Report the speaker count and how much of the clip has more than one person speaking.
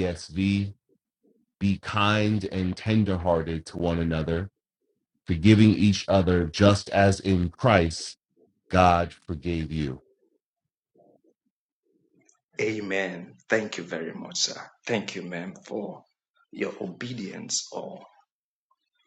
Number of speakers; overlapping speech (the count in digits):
2, no overlap